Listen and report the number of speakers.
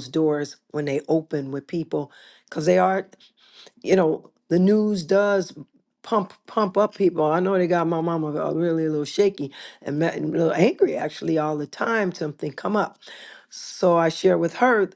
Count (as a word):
one